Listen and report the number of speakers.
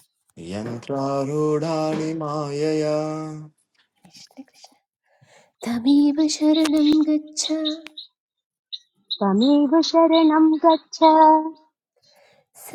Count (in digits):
3